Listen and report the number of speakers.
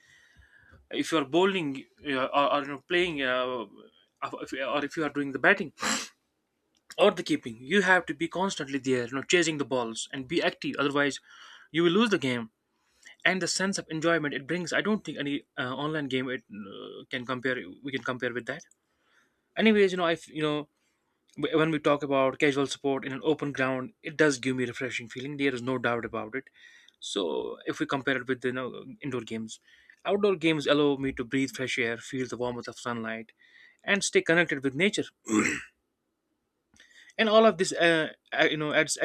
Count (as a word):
one